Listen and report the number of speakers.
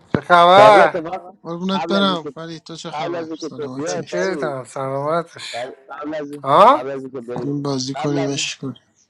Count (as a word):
three